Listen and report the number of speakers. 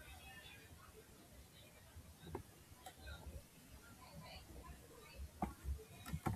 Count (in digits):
0